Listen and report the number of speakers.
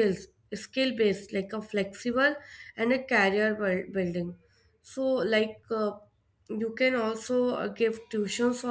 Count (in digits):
1